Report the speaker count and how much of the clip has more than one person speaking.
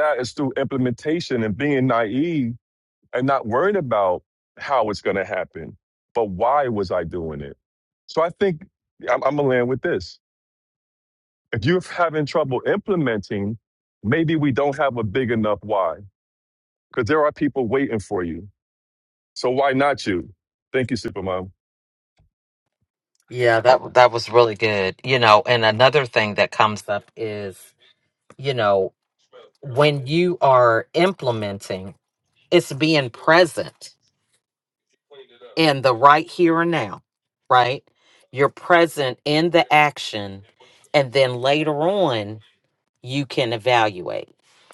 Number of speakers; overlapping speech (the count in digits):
2, no overlap